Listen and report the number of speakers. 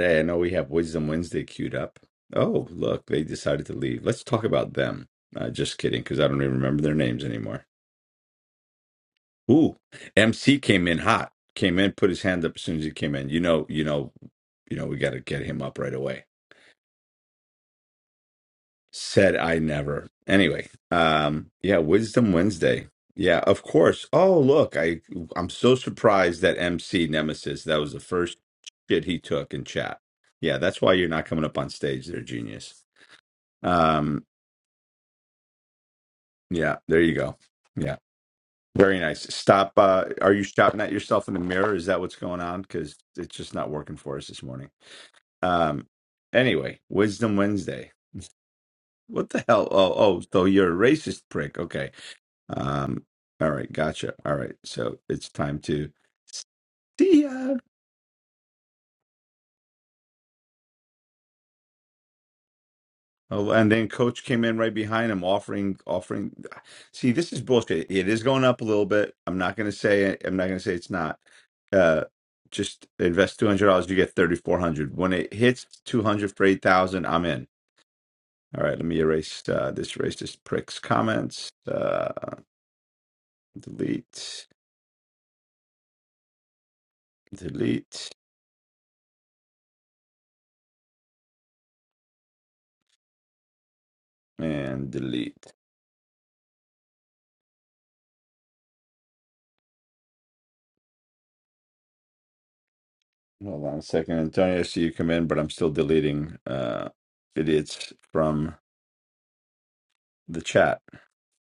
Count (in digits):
1